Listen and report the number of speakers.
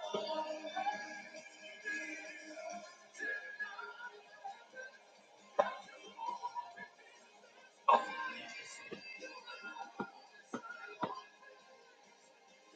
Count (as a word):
zero